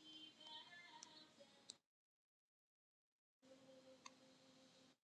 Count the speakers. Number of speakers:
0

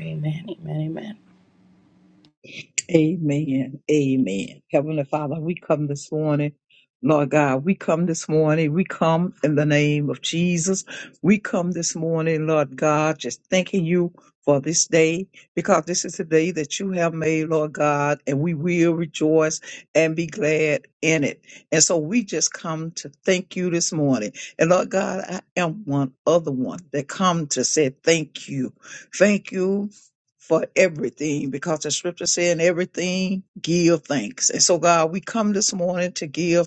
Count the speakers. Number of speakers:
2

